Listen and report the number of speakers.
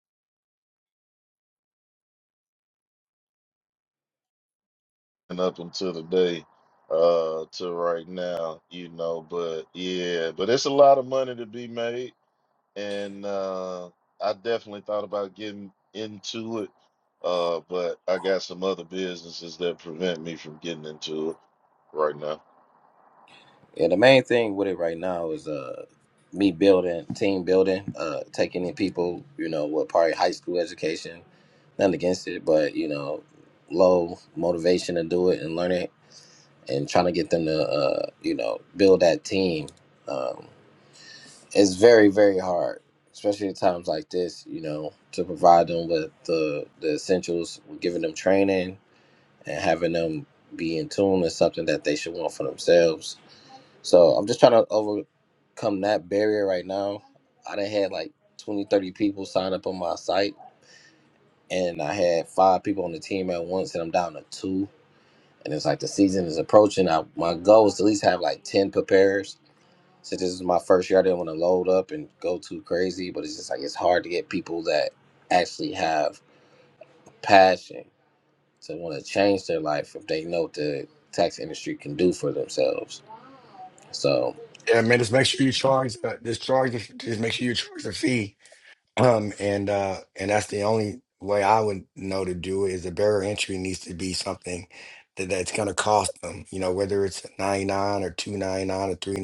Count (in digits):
3